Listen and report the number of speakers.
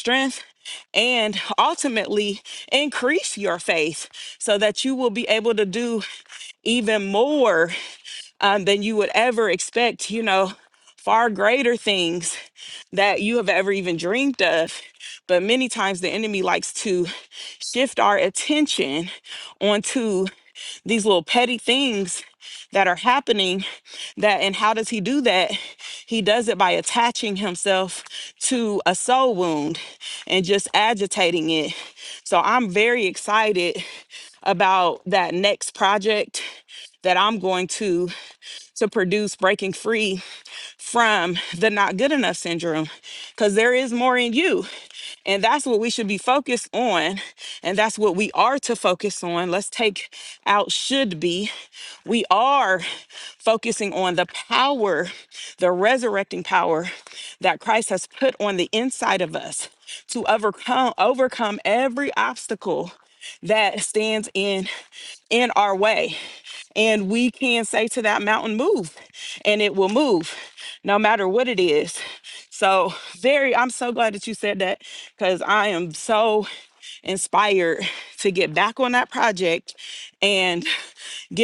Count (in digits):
1